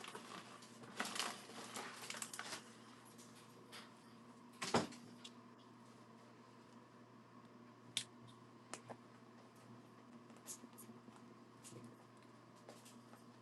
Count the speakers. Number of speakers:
zero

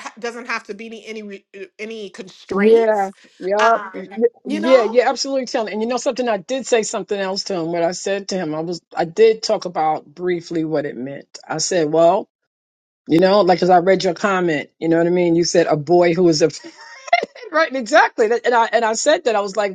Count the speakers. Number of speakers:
two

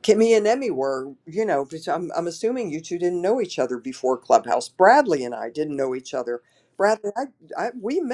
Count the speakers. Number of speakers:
one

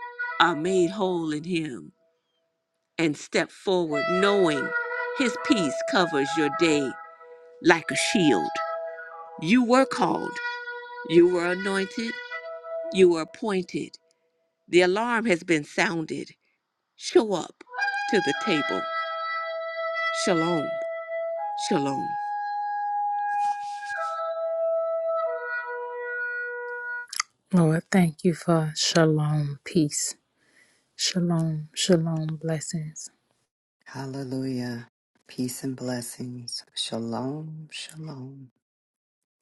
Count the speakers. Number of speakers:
three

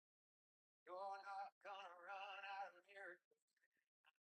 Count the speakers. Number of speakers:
zero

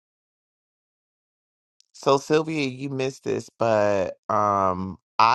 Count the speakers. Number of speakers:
one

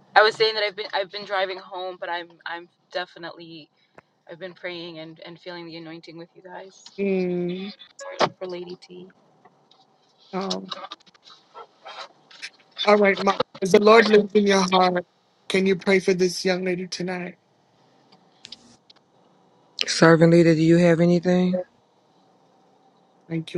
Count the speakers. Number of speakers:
three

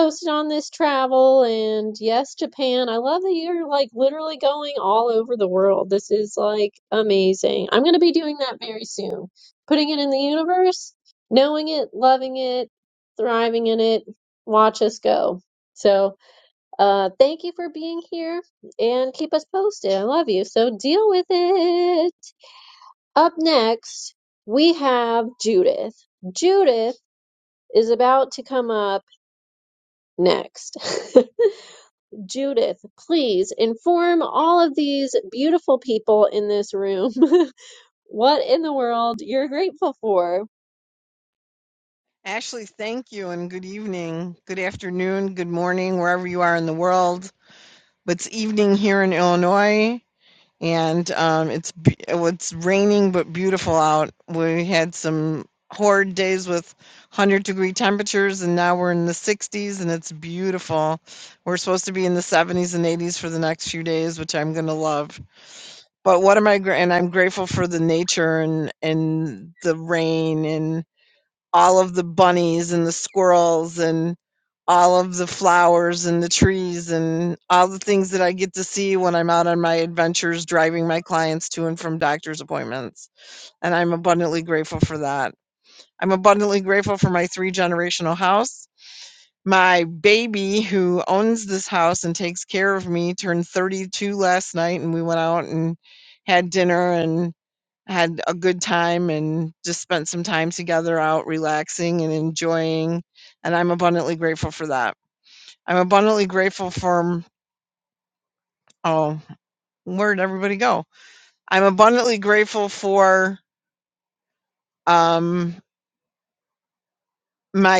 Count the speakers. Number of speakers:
two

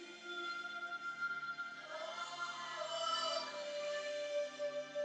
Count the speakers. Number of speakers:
zero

